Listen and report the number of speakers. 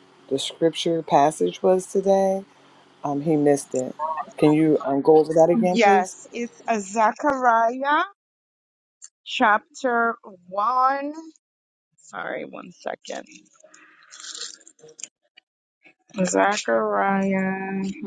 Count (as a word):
two